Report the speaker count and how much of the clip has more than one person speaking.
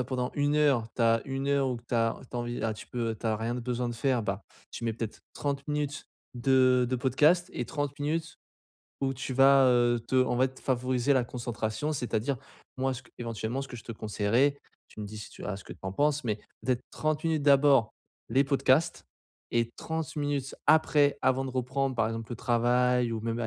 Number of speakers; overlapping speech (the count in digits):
1, no overlap